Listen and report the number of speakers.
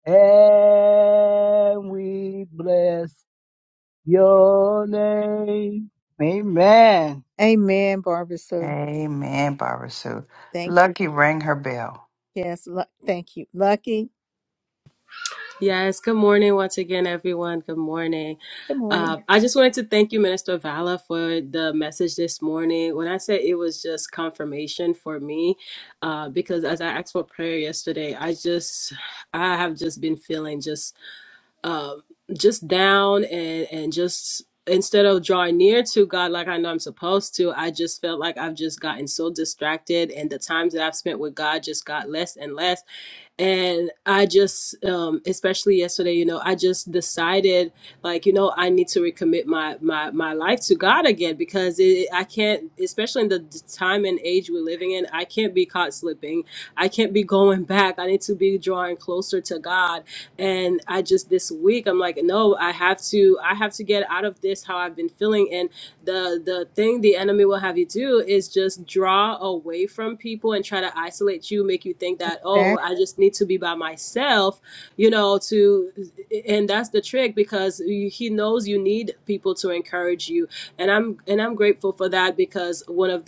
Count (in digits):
4